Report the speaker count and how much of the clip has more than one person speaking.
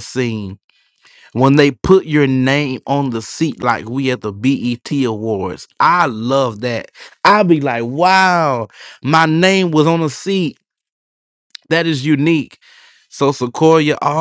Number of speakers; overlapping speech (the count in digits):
1, no overlap